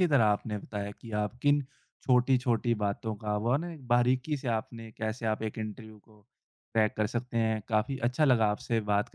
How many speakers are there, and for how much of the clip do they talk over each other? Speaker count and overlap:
1, no overlap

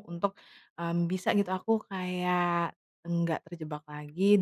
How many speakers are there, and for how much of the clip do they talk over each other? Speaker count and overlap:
1, no overlap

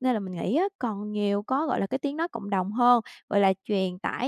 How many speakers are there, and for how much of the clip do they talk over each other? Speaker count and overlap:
1, no overlap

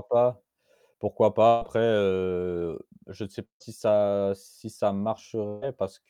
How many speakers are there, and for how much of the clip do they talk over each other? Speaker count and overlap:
1, no overlap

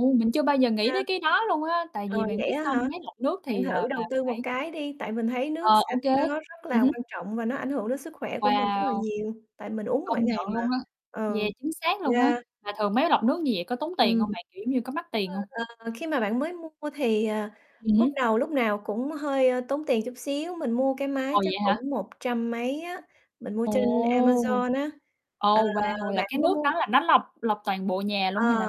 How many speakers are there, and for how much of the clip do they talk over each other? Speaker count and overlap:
2, about 23%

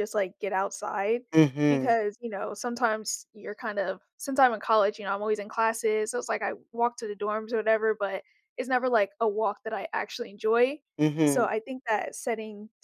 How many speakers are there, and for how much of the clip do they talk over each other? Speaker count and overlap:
2, about 3%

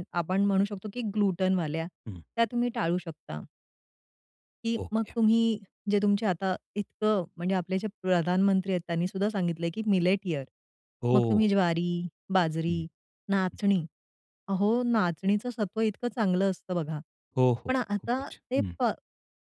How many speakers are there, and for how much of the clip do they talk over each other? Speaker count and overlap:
2, about 10%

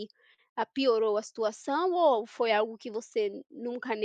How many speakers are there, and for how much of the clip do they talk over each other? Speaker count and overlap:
1, no overlap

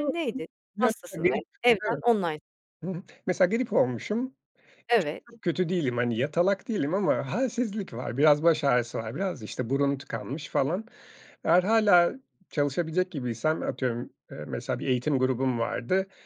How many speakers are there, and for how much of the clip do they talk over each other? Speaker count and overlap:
2, about 1%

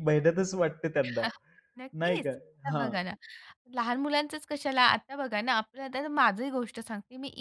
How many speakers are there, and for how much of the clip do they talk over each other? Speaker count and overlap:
2, about 8%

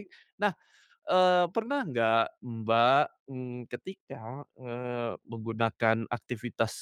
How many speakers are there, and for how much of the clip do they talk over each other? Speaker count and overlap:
1, no overlap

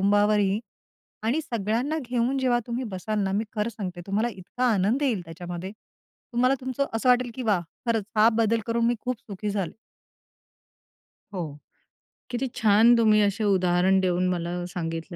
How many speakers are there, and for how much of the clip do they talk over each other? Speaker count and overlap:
2, no overlap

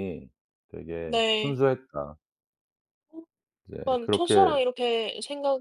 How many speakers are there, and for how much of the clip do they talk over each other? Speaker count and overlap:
2, about 21%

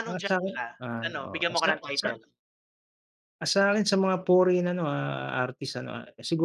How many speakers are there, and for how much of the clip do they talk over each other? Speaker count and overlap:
2, about 27%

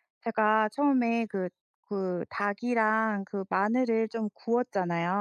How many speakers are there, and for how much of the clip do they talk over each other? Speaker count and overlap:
1, no overlap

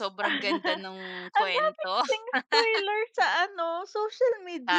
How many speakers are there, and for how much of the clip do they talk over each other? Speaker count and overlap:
2, about 15%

